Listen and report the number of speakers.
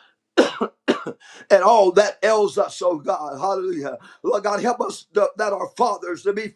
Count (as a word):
one